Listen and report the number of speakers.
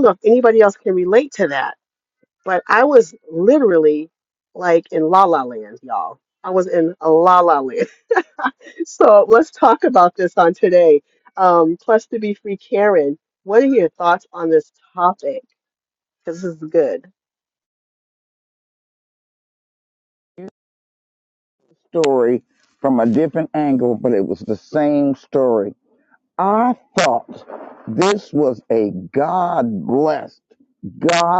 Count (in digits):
2